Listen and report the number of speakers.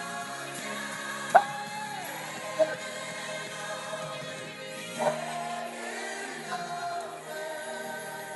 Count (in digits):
0